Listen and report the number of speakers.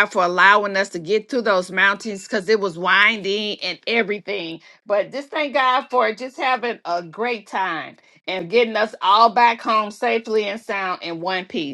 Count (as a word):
one